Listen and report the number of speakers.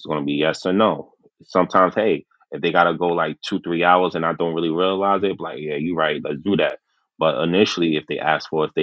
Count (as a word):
one